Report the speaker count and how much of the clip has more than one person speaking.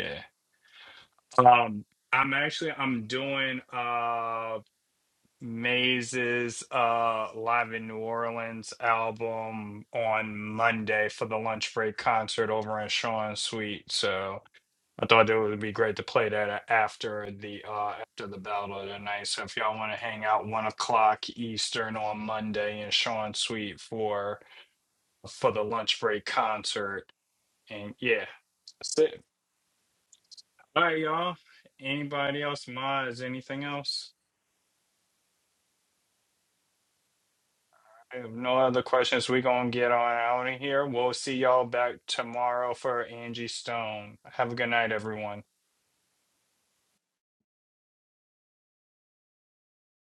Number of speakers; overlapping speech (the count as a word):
one, no overlap